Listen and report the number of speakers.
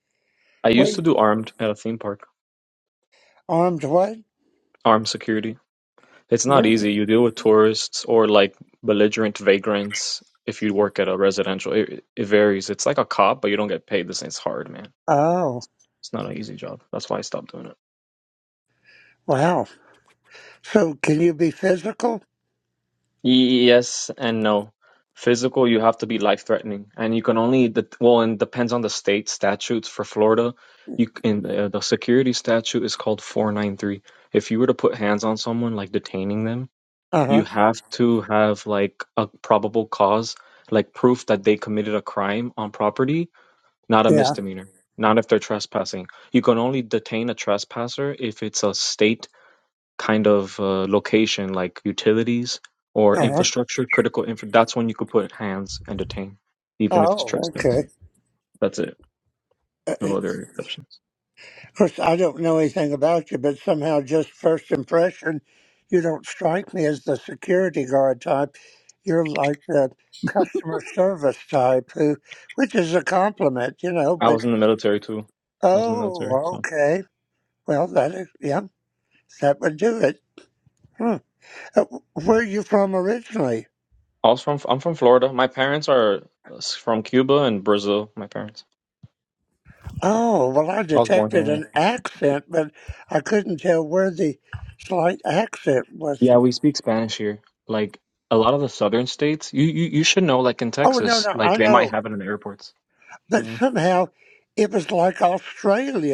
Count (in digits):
2